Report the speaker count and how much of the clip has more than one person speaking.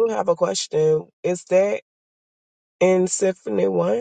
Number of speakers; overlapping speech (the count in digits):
1, no overlap